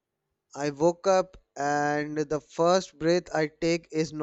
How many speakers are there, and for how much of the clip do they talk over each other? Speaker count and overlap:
1, no overlap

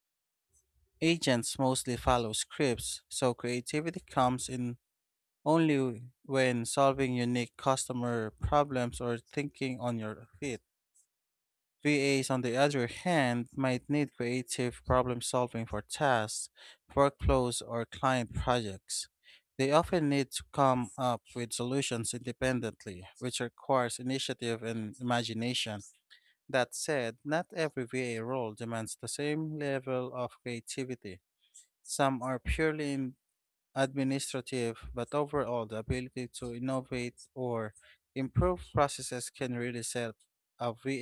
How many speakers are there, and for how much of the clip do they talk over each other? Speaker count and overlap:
1, no overlap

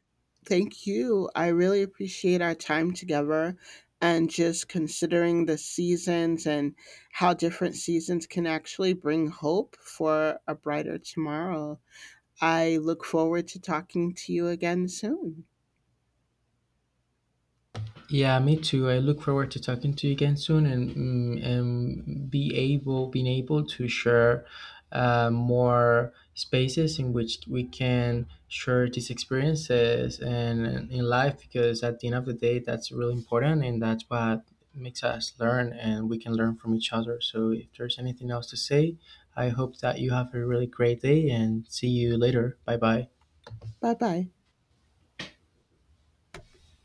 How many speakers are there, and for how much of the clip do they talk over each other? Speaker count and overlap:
2, no overlap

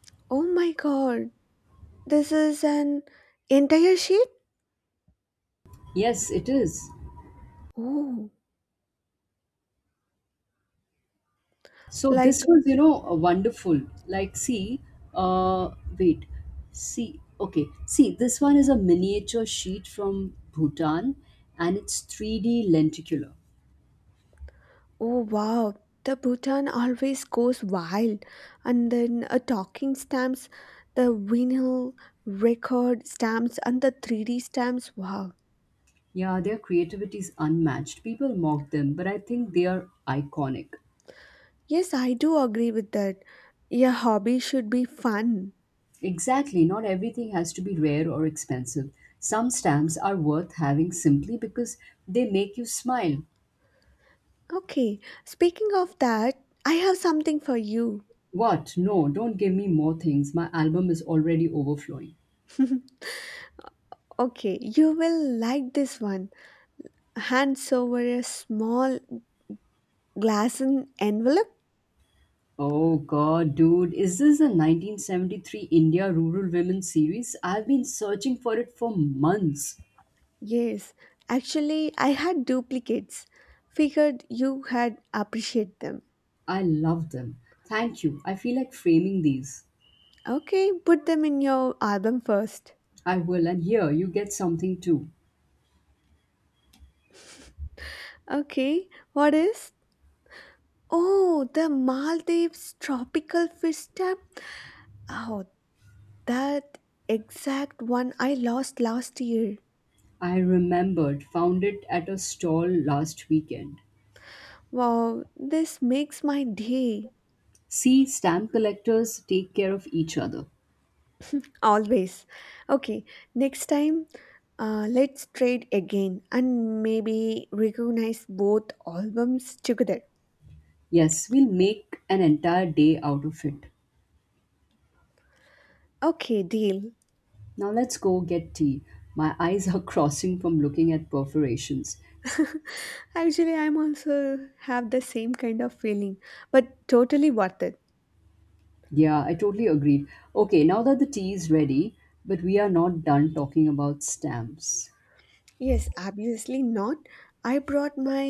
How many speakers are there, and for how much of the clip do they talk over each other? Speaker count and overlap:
2, under 1%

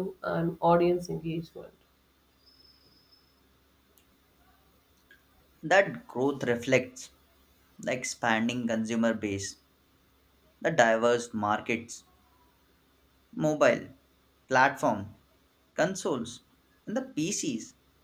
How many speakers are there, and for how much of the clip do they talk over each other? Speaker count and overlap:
2, no overlap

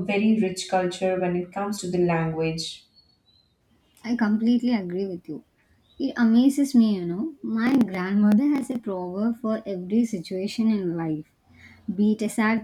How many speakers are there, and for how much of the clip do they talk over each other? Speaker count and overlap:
2, no overlap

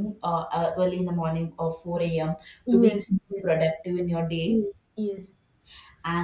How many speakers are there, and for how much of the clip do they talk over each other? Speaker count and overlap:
2, about 7%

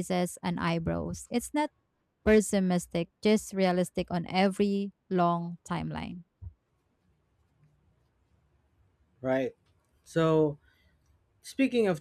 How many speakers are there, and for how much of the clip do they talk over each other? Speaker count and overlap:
2, no overlap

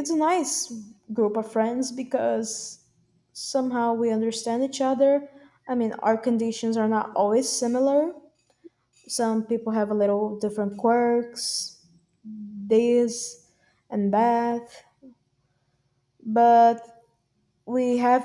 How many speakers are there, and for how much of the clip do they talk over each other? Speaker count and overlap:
1, no overlap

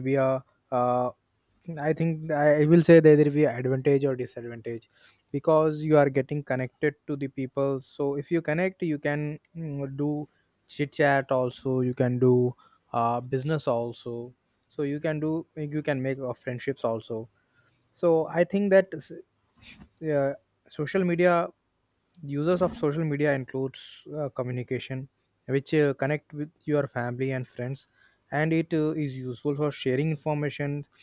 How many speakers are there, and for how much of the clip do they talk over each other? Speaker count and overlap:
1, no overlap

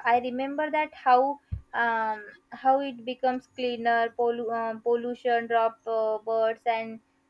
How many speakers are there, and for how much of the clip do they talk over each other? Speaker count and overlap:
1, no overlap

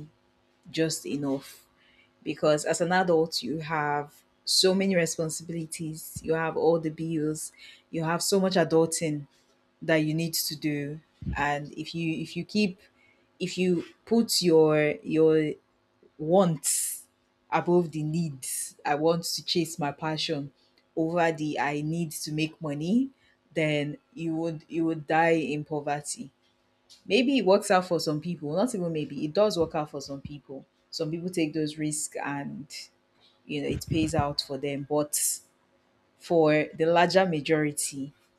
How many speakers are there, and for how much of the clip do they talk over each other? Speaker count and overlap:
1, no overlap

